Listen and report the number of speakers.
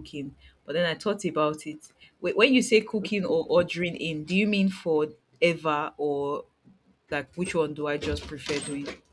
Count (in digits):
1